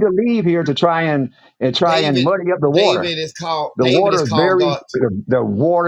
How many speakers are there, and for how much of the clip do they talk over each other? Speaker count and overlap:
2, about 32%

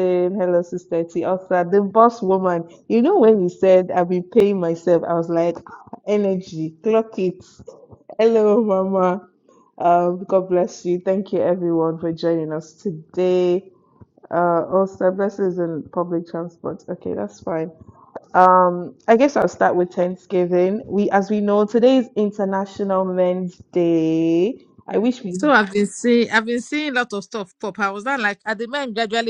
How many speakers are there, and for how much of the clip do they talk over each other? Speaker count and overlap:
2, under 1%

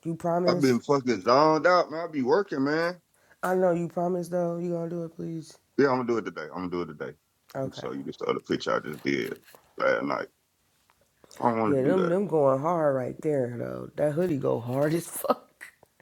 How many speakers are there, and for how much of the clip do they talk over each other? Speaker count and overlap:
2, about 6%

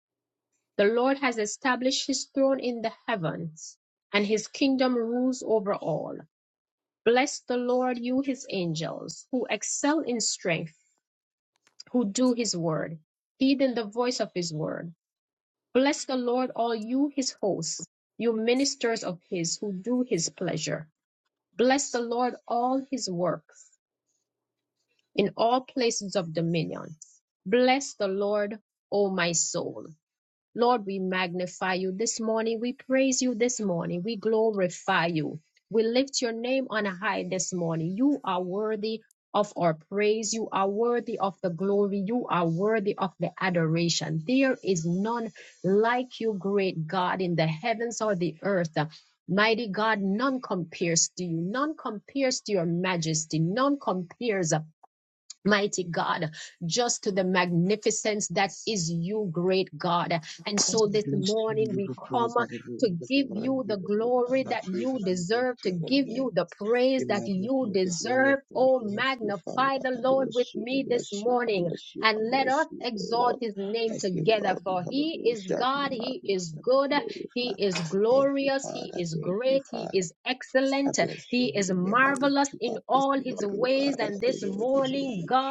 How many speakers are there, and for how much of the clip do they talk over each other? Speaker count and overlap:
2, about 25%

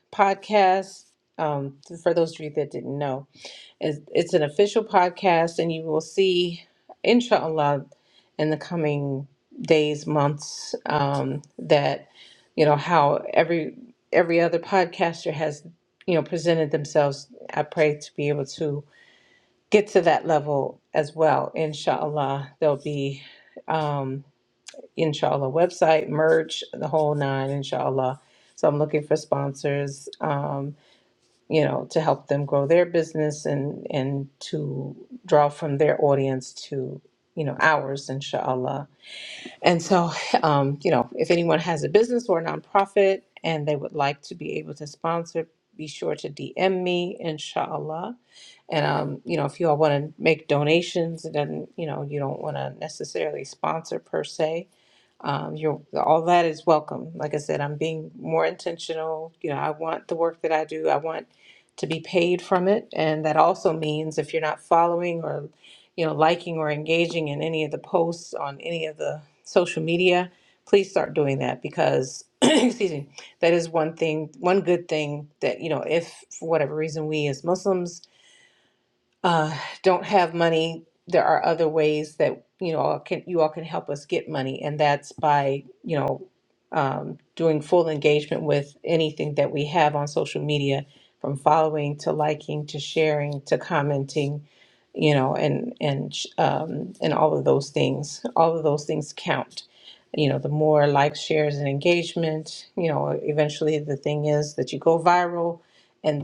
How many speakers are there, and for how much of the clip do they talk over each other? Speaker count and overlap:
1, no overlap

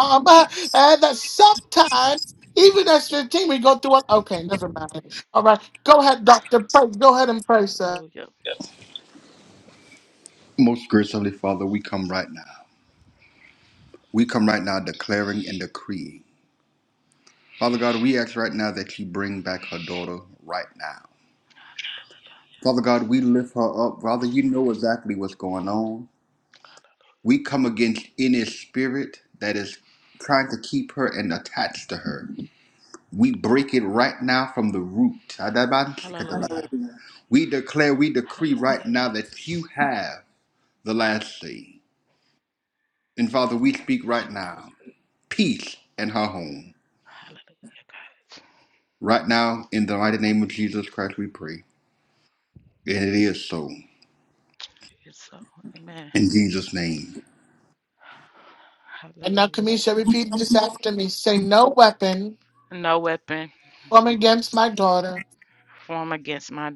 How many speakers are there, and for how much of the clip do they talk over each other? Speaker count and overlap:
3, about 3%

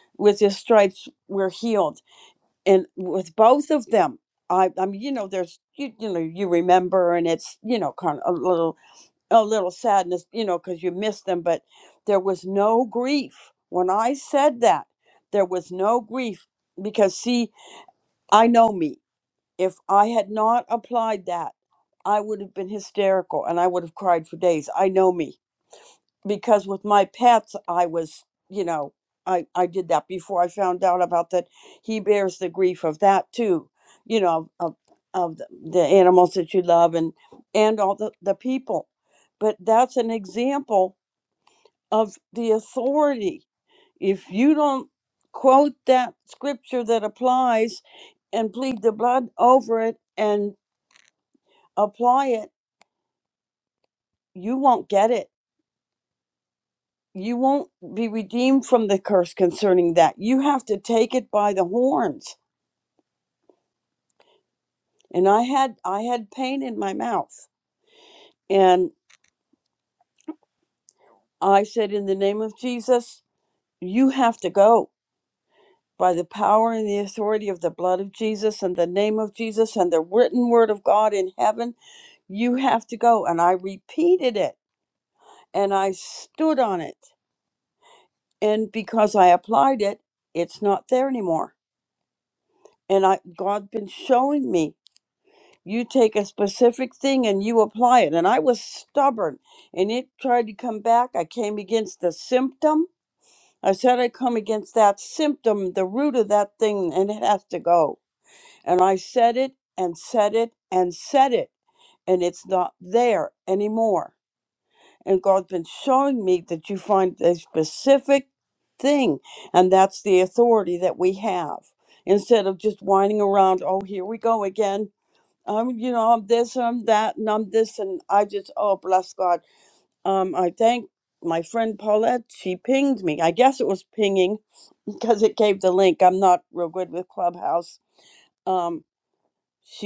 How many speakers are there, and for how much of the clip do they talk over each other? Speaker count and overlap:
1, no overlap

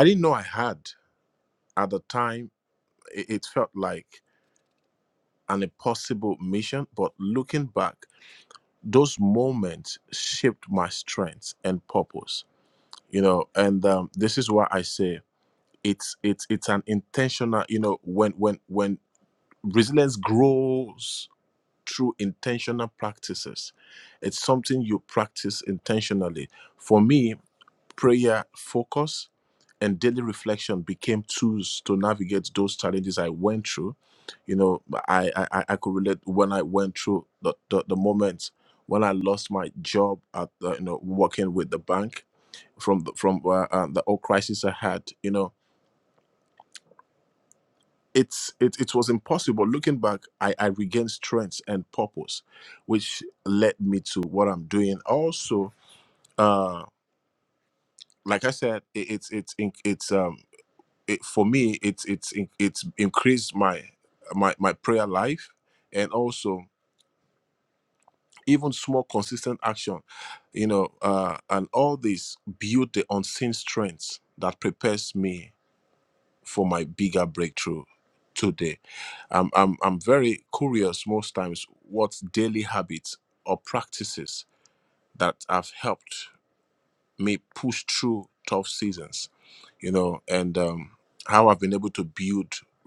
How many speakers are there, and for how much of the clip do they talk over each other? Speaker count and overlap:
1, no overlap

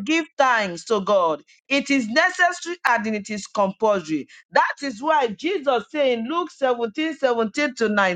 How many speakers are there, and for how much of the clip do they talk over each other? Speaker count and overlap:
1, no overlap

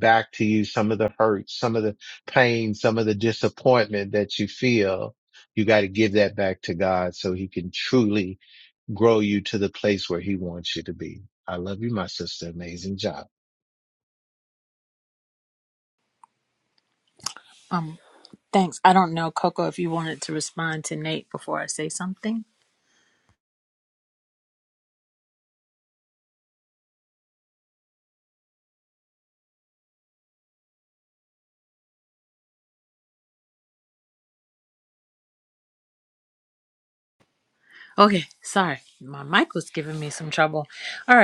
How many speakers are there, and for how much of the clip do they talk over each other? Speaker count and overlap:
2, no overlap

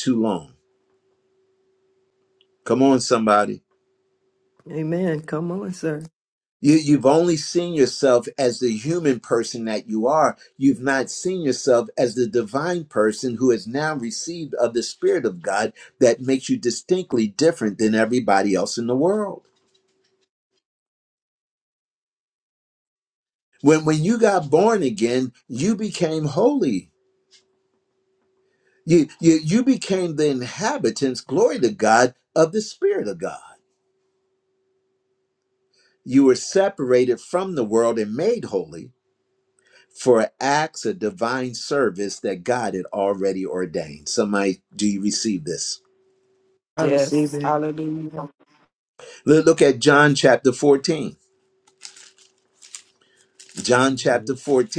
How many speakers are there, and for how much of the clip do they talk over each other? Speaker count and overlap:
3, about 1%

